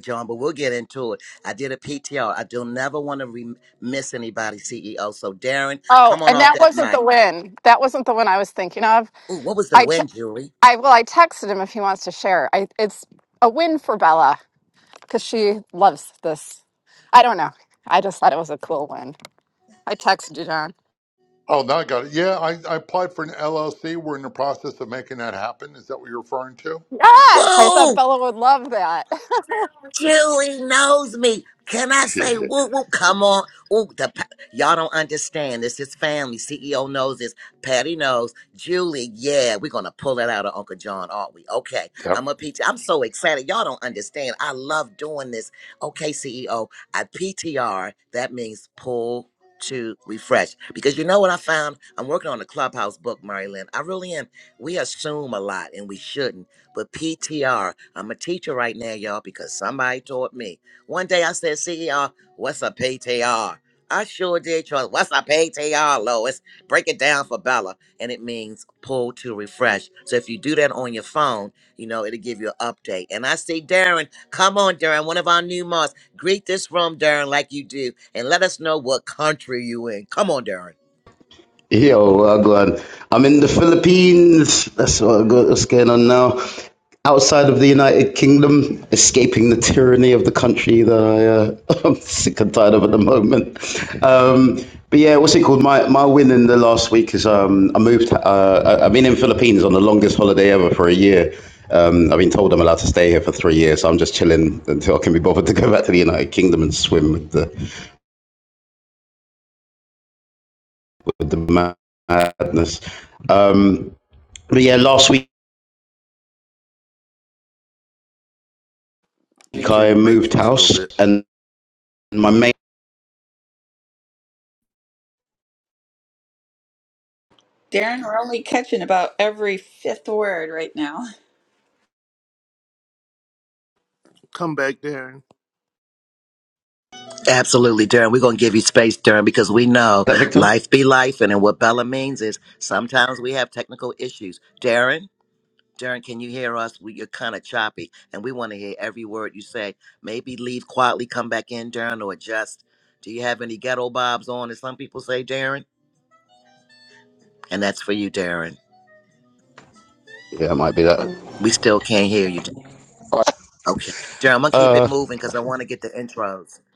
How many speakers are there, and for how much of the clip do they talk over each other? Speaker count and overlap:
six, about 3%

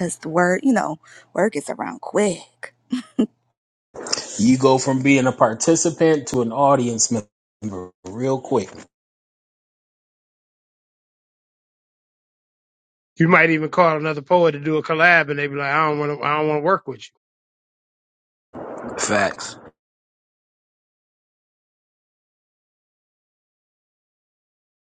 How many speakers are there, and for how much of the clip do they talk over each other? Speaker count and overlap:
three, no overlap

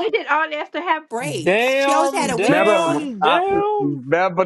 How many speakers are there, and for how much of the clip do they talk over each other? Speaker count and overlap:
three, about 51%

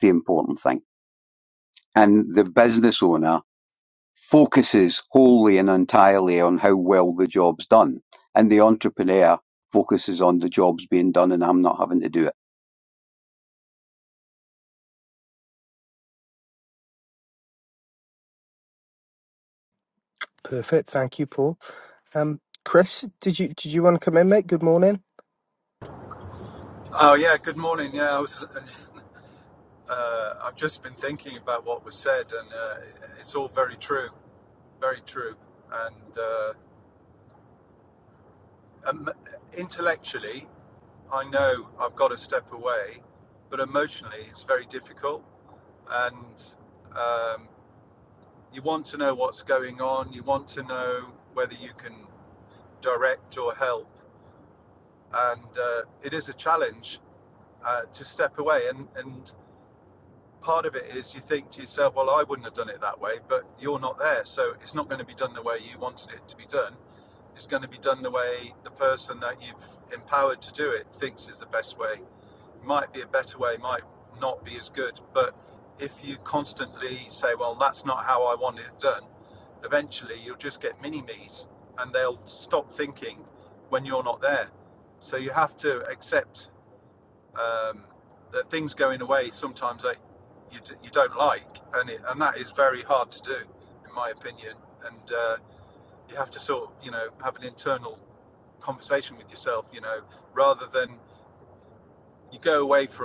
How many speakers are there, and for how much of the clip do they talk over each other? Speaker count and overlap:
three, no overlap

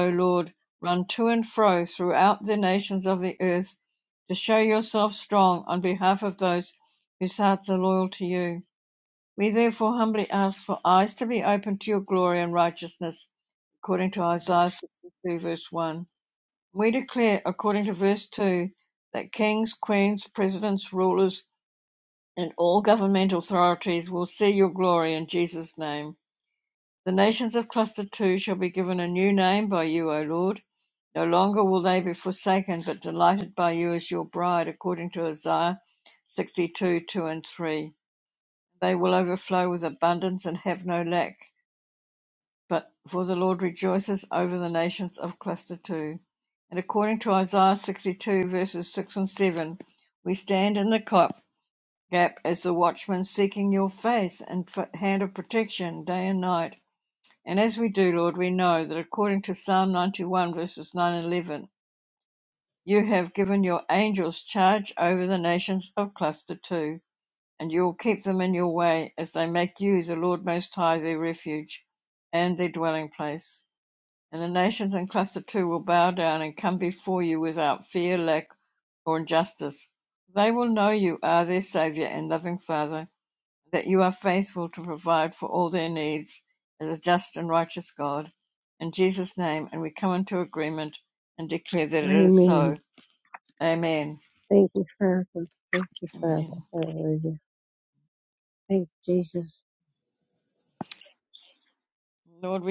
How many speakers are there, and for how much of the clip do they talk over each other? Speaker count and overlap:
two, about 1%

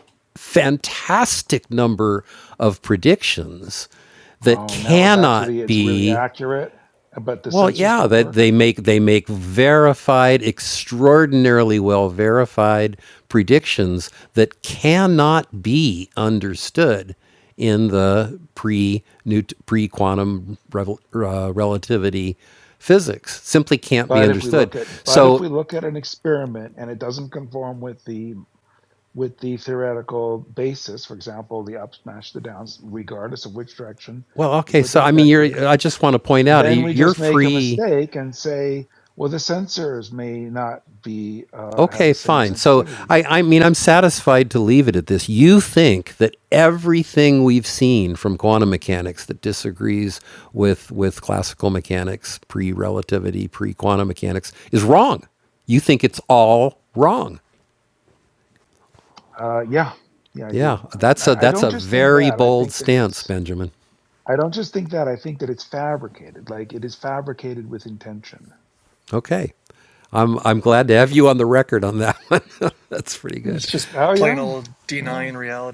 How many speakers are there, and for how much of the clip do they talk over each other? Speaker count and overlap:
three, about 14%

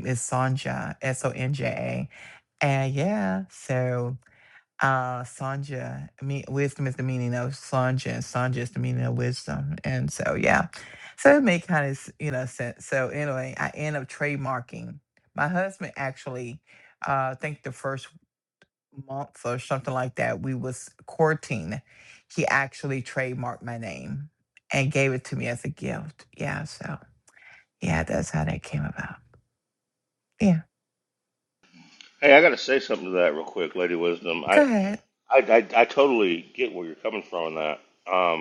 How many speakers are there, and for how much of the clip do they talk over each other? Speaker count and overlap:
two, about 1%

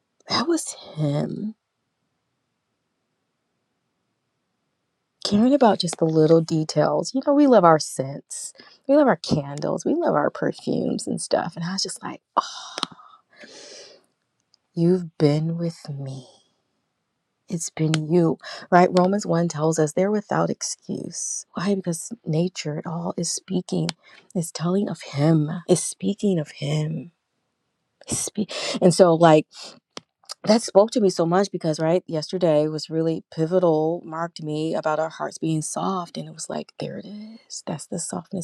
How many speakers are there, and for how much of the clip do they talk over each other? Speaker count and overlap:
one, no overlap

